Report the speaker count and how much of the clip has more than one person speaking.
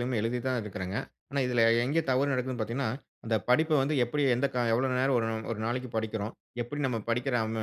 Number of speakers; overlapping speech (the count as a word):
one, no overlap